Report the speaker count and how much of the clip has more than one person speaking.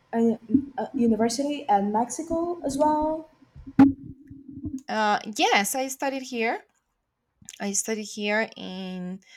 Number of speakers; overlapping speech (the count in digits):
2, no overlap